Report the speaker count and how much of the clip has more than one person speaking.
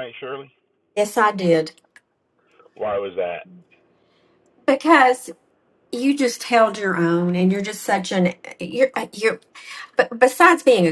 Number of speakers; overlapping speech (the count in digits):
2, no overlap